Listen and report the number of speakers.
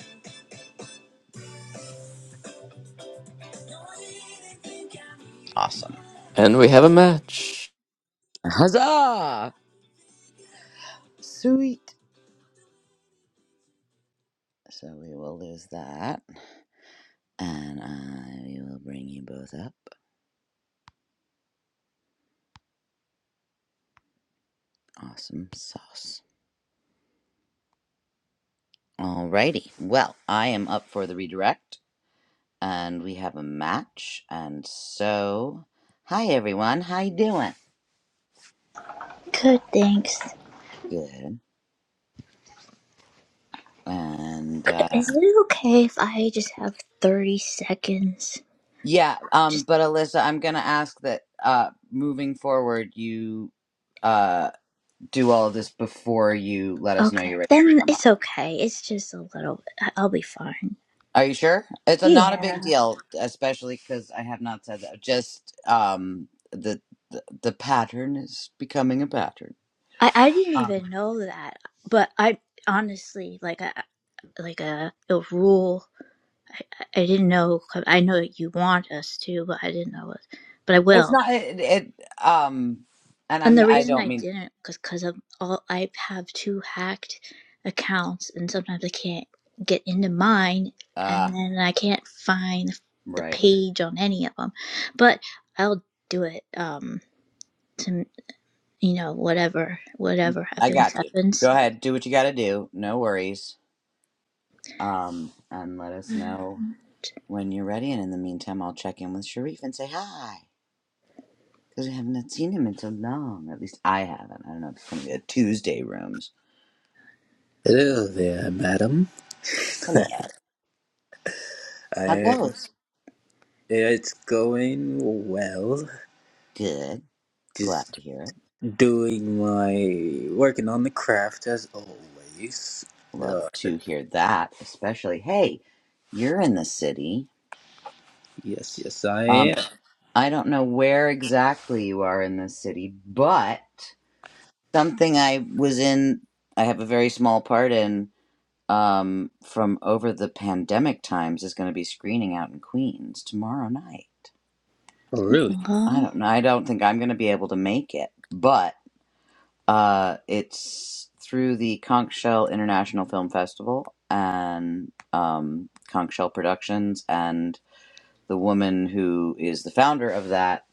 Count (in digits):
4